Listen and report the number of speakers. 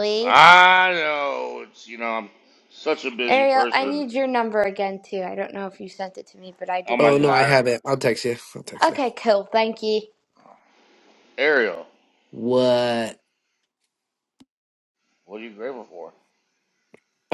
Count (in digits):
3